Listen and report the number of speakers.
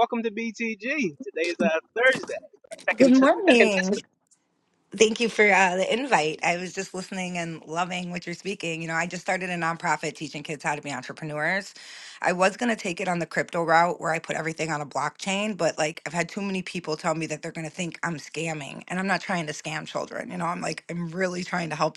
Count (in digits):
2